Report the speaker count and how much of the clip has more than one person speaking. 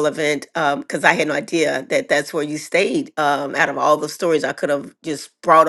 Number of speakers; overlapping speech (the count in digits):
1, no overlap